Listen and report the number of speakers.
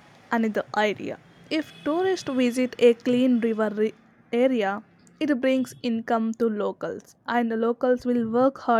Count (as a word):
one